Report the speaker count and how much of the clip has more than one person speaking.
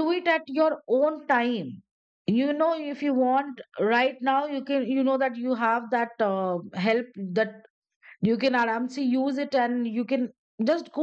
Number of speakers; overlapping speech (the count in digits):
1, no overlap